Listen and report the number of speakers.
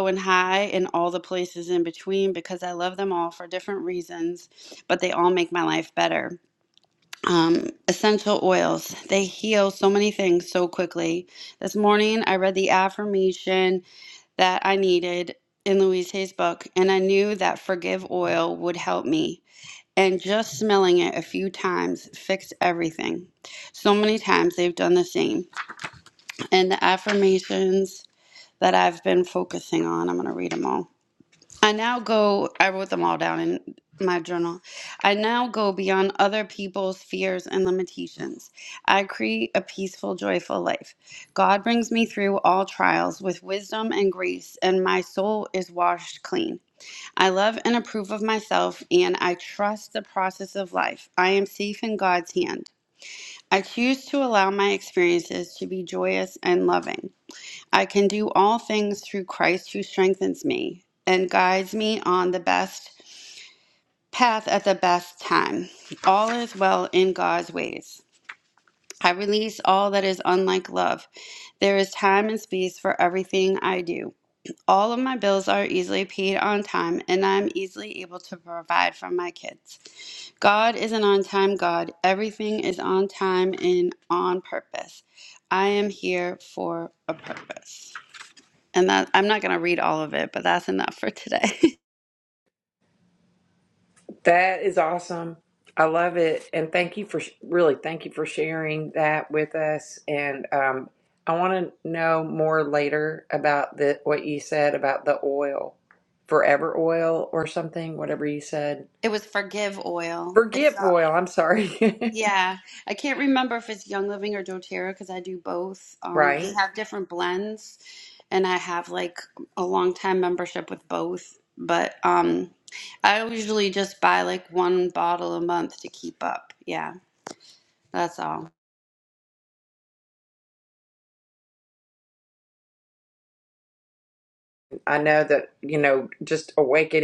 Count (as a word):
two